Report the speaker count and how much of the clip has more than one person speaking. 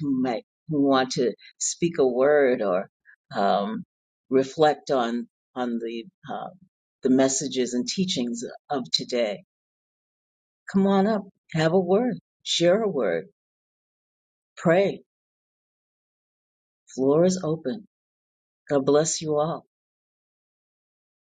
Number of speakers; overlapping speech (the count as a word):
one, no overlap